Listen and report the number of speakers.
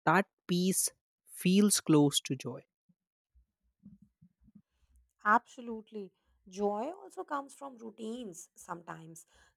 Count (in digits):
2